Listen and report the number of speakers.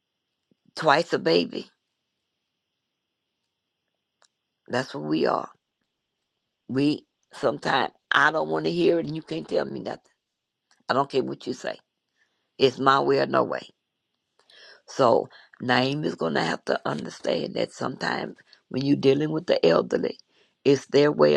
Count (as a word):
one